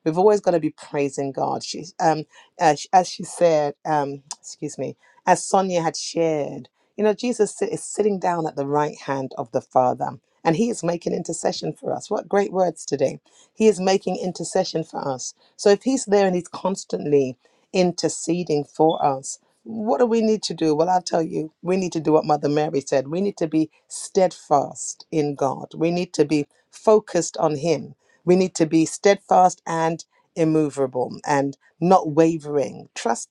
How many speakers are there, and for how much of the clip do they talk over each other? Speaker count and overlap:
one, no overlap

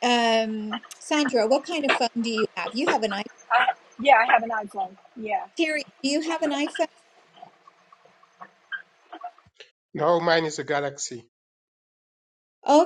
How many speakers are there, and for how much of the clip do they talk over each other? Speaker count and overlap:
three, no overlap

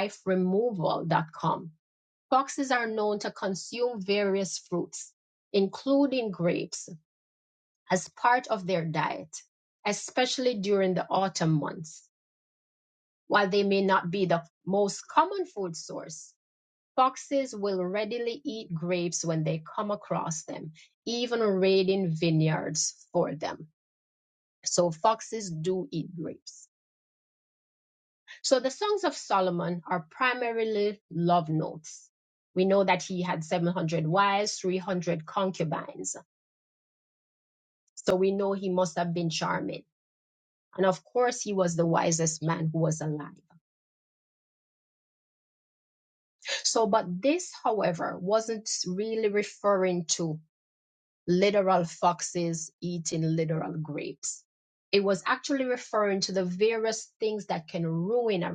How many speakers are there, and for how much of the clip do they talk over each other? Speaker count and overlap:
one, no overlap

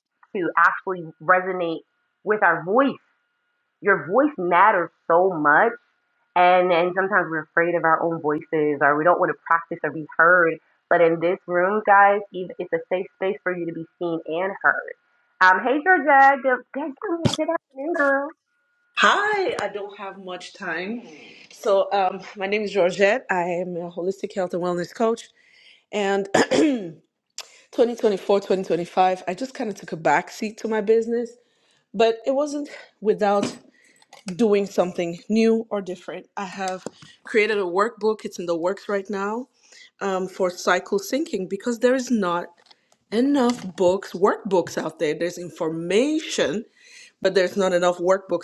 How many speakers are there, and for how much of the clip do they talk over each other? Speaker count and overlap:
two, no overlap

